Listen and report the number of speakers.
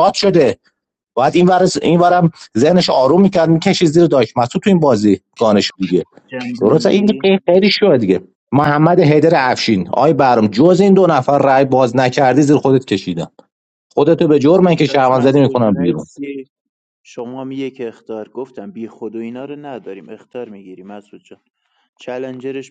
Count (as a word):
two